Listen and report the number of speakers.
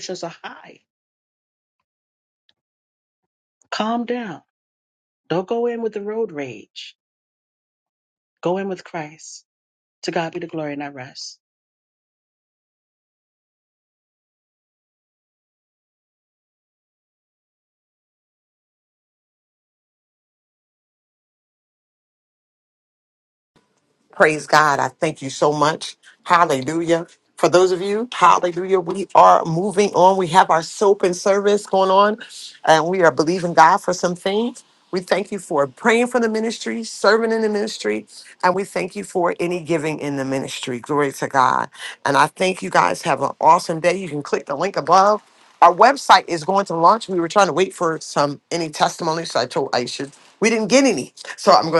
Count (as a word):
two